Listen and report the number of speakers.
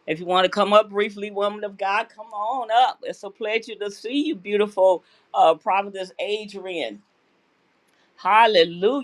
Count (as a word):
one